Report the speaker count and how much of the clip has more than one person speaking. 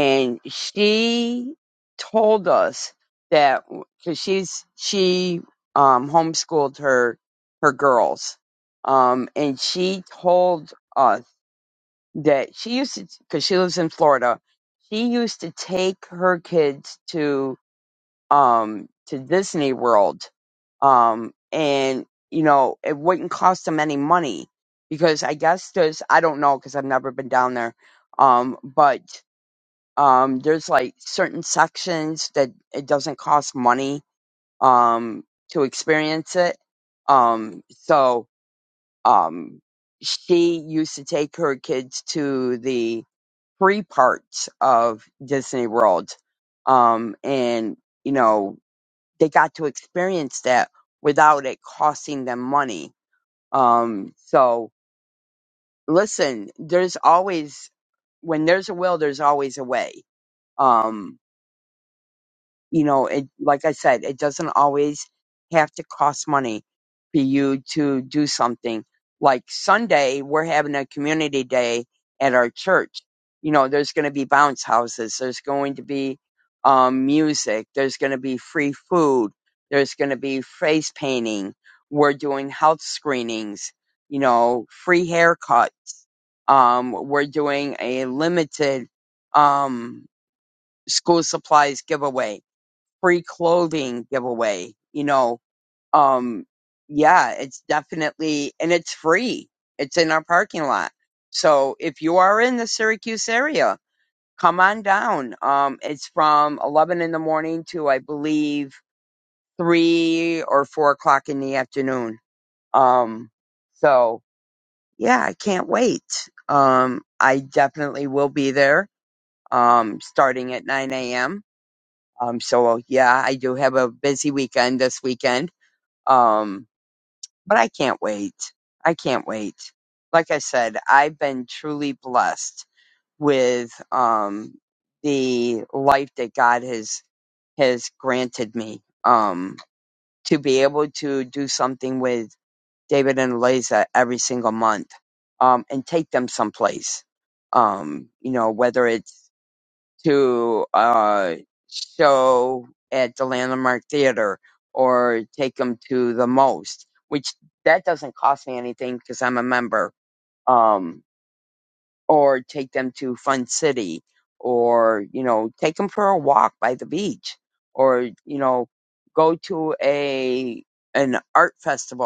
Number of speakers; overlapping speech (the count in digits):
1, no overlap